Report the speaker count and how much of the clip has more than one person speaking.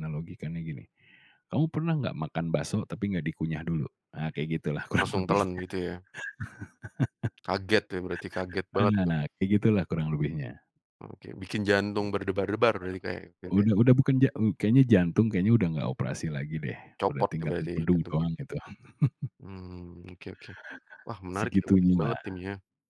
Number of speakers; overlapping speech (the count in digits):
2, about 14%